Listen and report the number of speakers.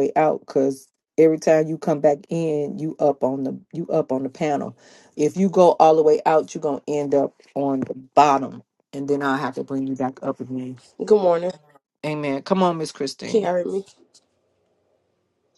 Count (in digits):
2